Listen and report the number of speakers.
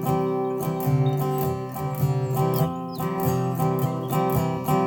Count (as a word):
zero